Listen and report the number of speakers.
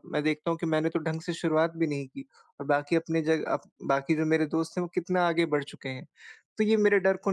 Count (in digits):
1